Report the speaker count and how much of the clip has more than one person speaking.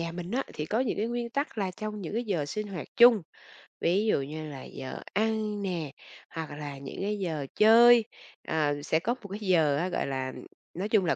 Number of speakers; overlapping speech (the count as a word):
one, no overlap